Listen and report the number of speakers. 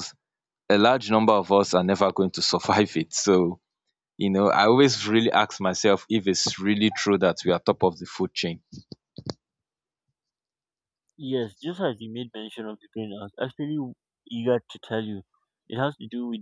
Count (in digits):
2